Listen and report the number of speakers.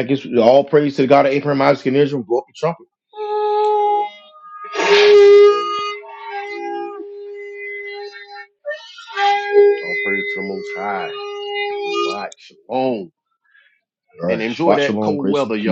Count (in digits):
2